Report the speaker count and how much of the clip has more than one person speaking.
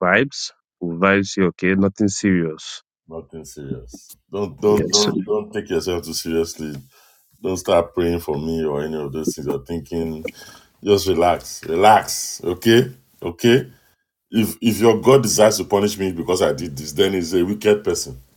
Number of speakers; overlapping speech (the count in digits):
2, about 2%